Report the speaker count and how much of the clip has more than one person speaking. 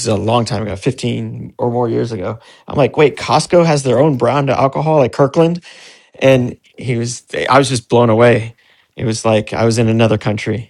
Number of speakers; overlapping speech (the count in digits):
1, no overlap